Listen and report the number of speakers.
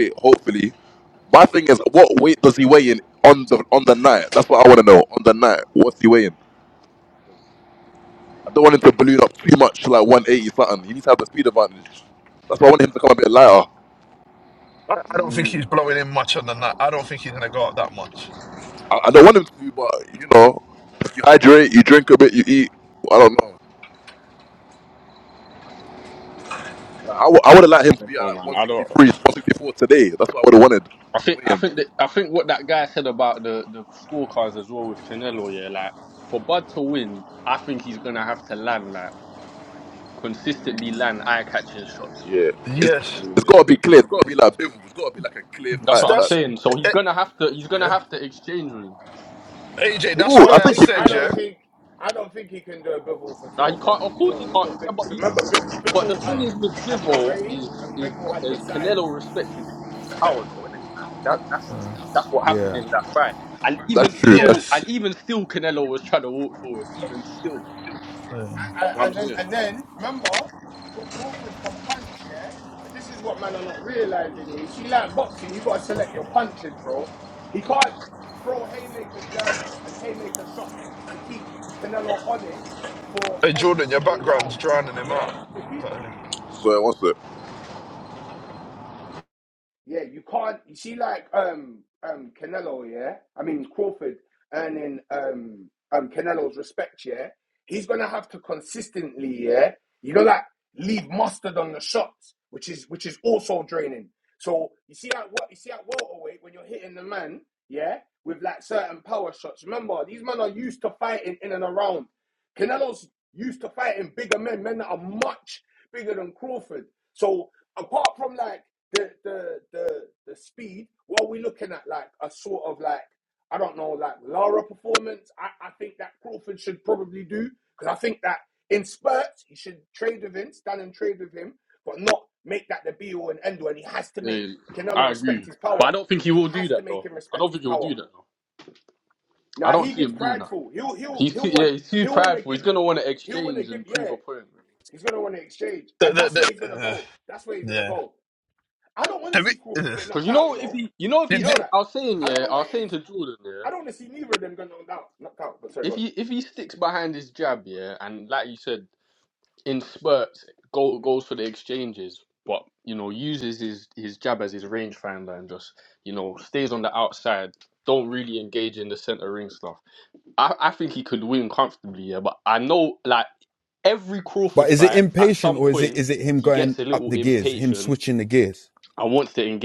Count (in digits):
5